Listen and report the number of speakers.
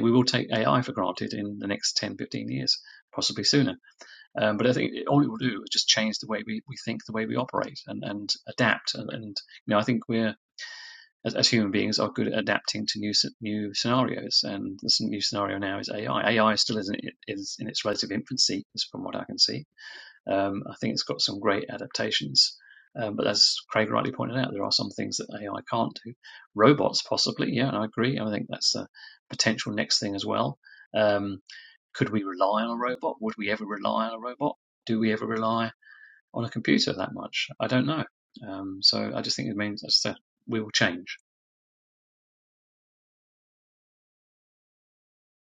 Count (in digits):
1